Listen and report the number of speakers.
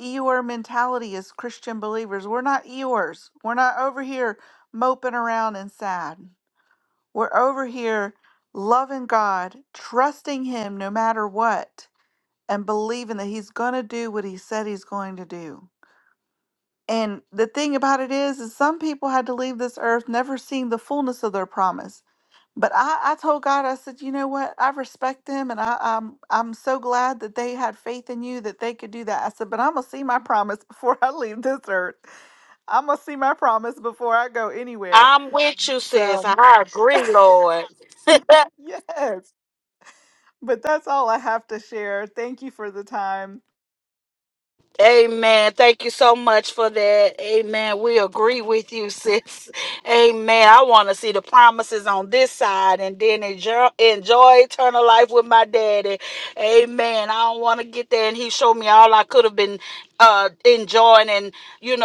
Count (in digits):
2